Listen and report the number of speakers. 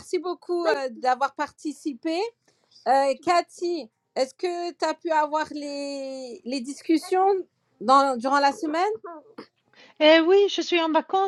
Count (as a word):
two